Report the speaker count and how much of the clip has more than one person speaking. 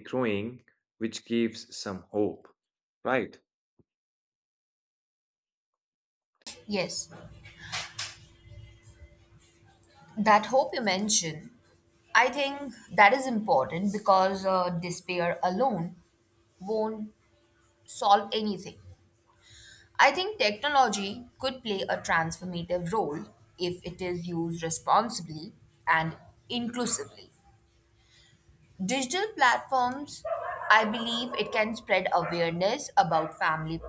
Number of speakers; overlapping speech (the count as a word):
two, no overlap